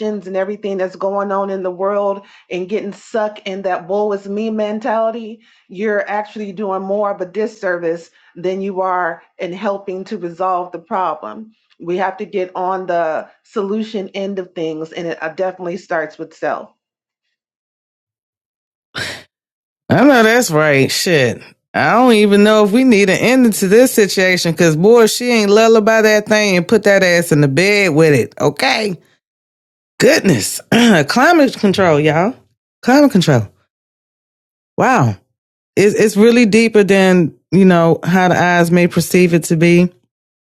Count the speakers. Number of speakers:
two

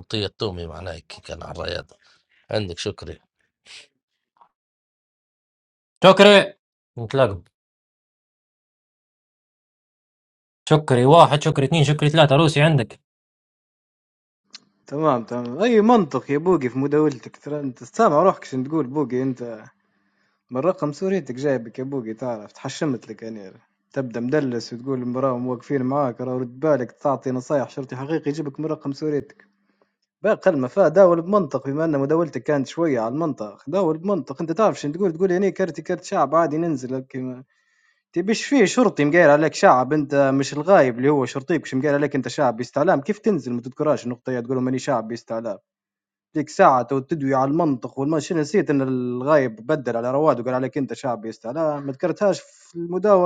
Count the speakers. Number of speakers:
three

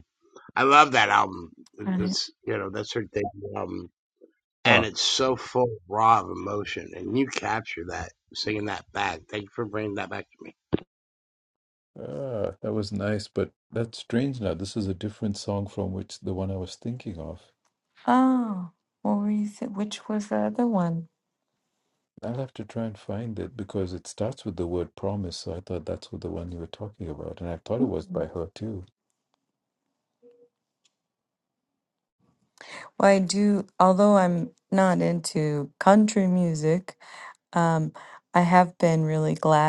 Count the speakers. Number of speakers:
three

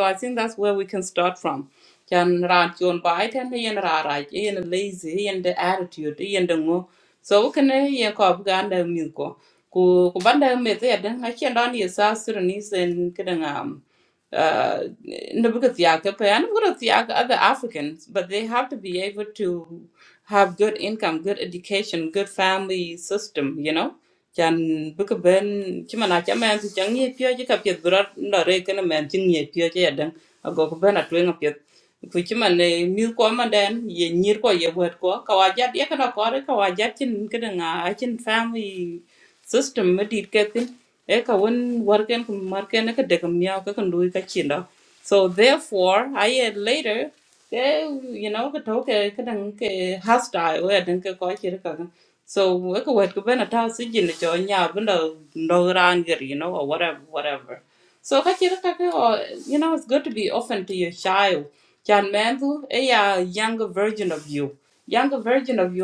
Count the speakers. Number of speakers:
one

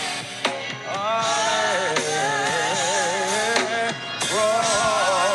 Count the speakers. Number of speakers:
zero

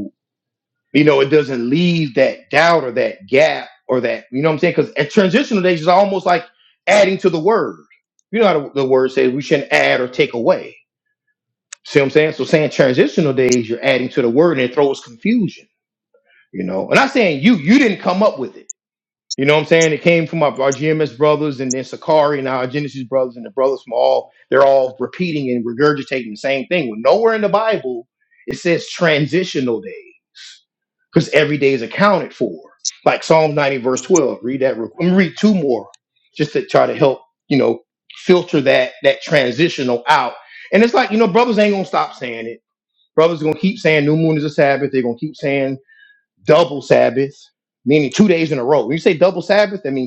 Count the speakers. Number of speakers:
one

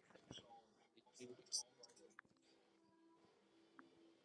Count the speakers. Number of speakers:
zero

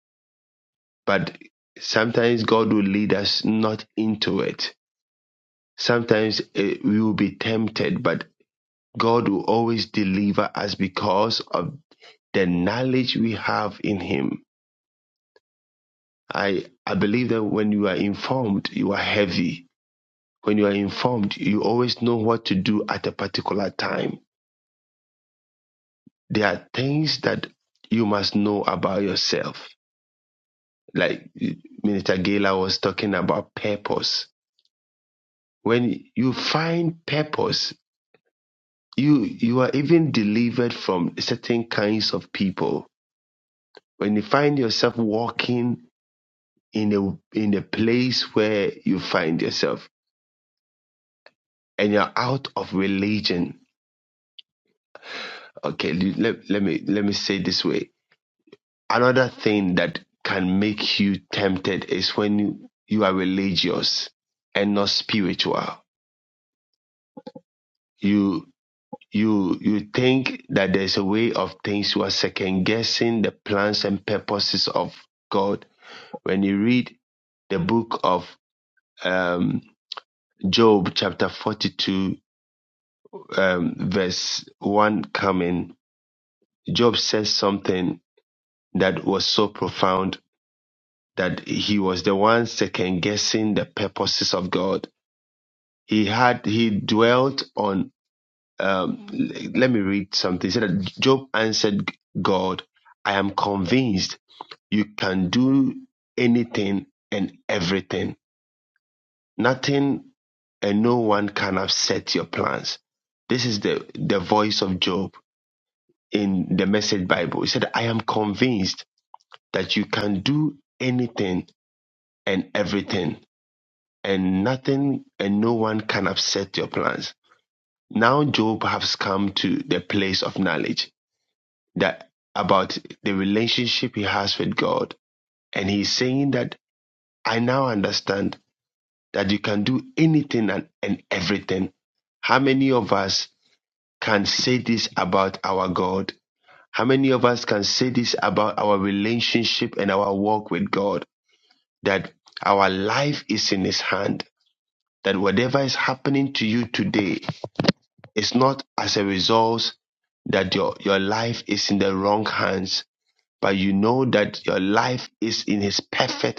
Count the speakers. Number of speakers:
one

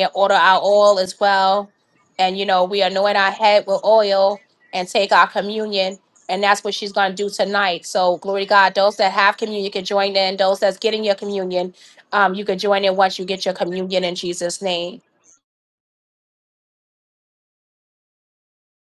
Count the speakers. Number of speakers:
one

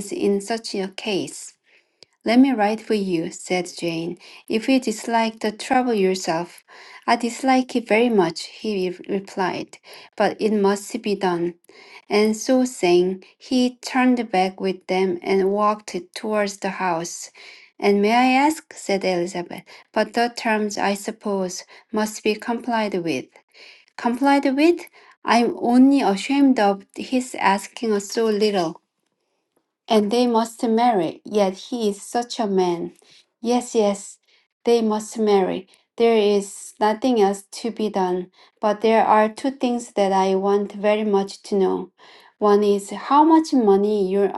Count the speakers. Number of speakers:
one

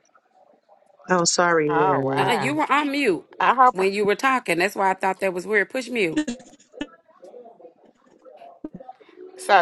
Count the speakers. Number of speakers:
three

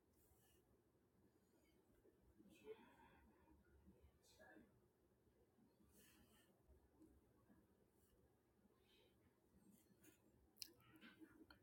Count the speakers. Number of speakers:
zero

